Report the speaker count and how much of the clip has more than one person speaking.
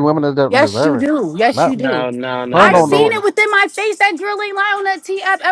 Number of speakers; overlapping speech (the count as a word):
three, about 30%